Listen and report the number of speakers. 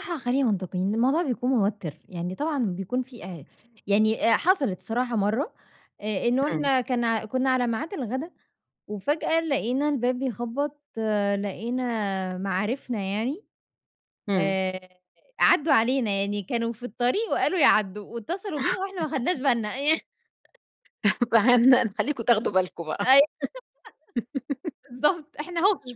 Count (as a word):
two